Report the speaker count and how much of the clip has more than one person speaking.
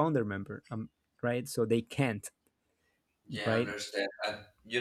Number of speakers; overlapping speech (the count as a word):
two, about 6%